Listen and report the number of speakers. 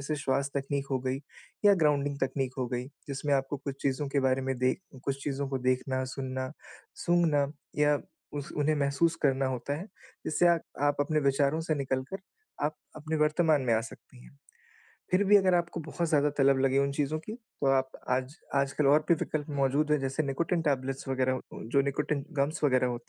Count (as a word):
one